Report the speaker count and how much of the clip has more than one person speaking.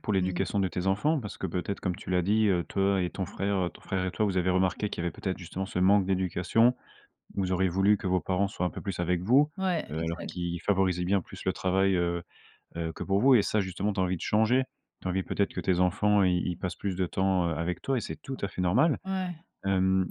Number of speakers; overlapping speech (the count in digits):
2, about 3%